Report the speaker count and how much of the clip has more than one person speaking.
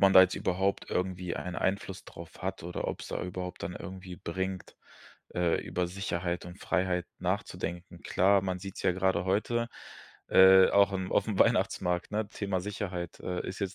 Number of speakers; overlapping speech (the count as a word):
one, no overlap